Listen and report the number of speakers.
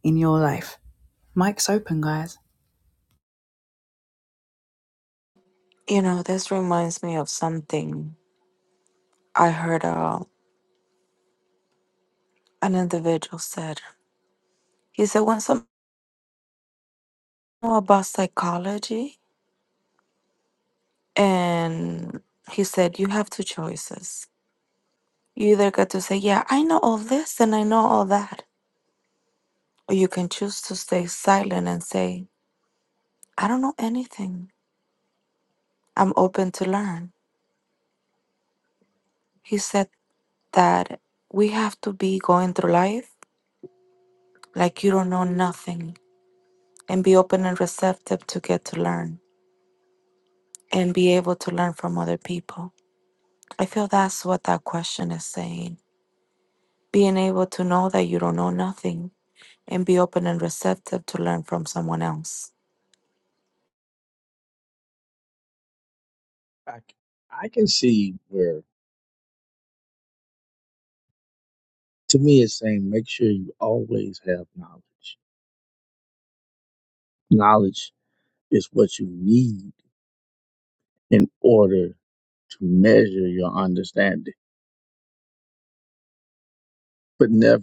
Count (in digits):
3